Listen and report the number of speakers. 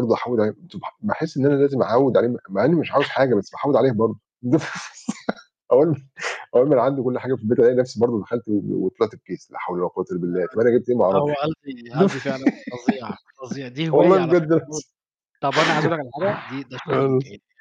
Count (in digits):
2